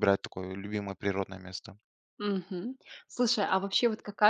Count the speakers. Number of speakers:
2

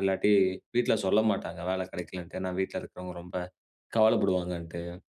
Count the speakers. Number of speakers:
1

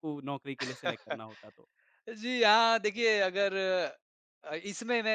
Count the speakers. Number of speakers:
2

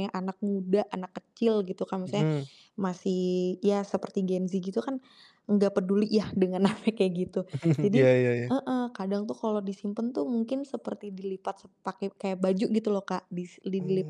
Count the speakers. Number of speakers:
2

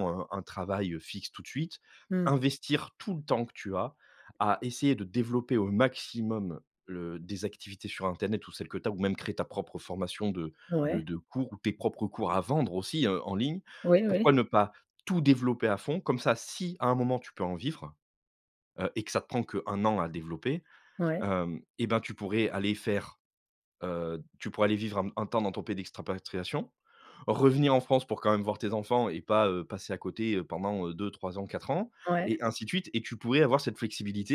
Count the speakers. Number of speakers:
2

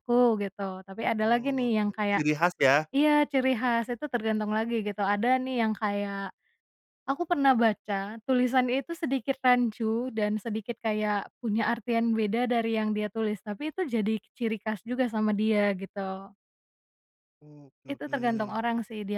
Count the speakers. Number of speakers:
2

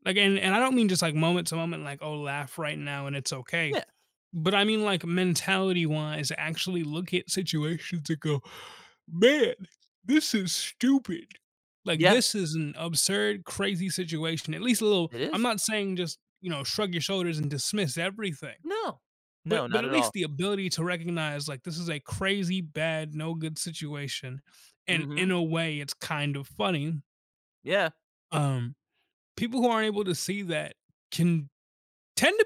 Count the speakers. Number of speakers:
2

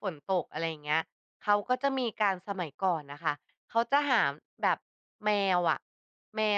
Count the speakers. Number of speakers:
1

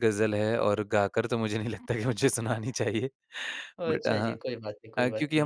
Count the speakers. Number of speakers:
2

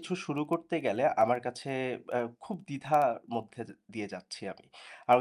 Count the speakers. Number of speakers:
1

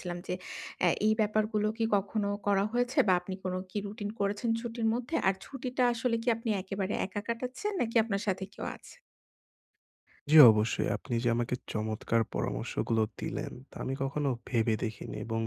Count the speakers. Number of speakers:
2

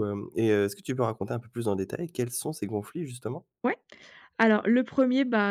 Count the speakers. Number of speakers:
2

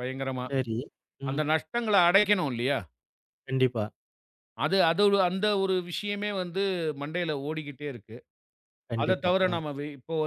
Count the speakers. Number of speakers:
2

